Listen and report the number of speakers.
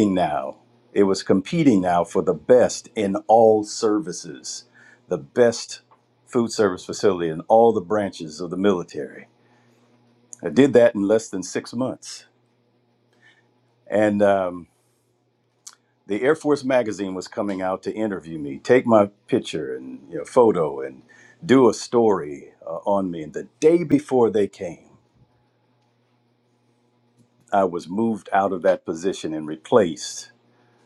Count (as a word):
one